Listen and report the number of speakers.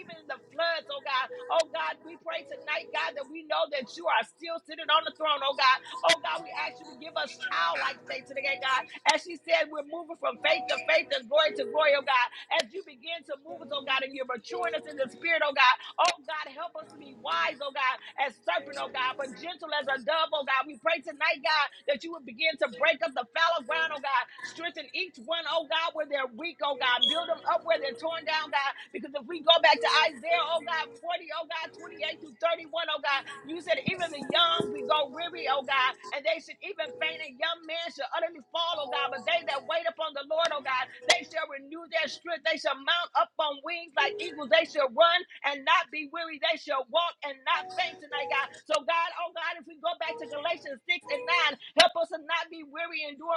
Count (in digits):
1